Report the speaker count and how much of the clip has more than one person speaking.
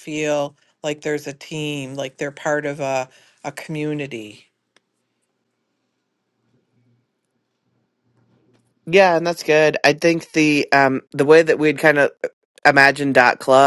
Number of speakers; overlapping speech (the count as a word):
two, no overlap